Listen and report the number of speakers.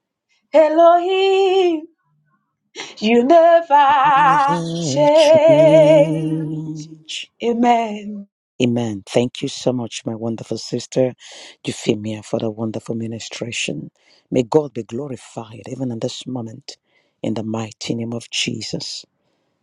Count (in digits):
2